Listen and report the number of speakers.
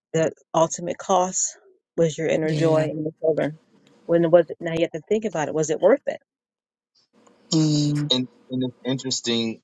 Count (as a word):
three